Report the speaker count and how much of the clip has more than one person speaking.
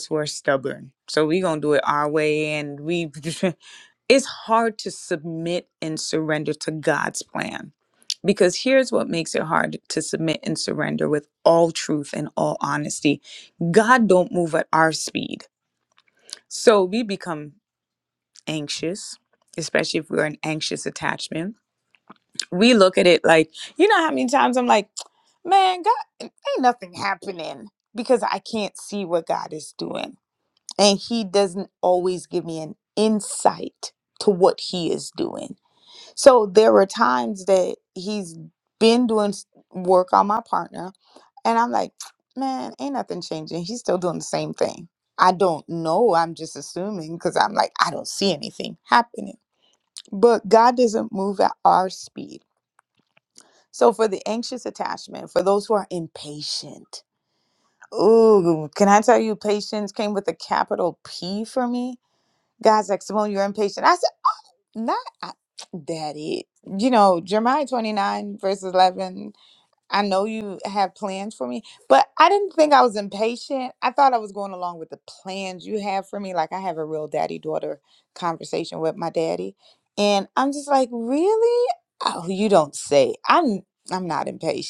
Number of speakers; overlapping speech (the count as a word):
one, no overlap